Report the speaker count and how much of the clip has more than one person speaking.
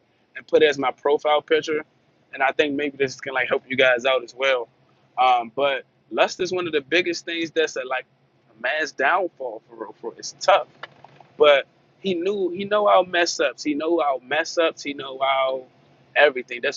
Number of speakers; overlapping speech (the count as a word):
one, no overlap